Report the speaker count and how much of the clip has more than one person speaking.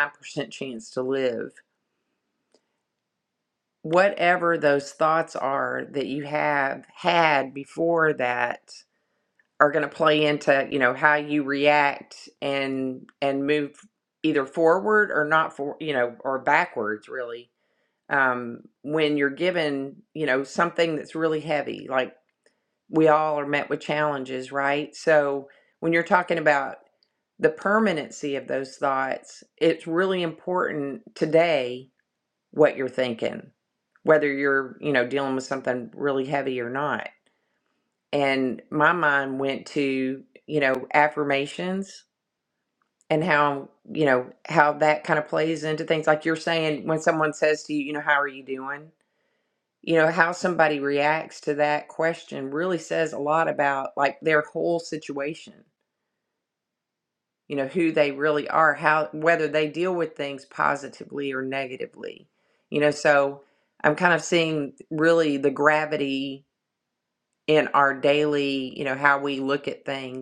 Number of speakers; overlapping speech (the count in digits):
1, no overlap